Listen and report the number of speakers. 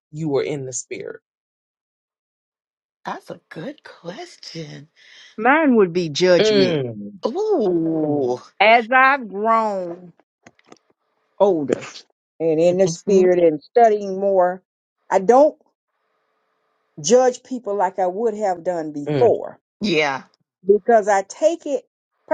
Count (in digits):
3